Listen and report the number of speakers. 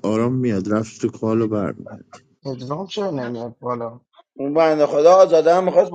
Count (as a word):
three